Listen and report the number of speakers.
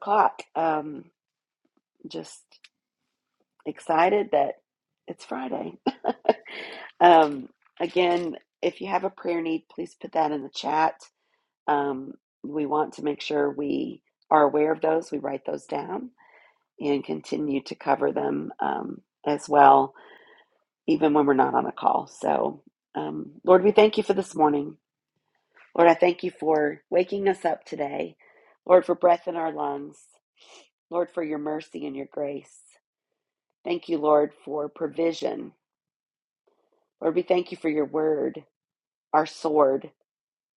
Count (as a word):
one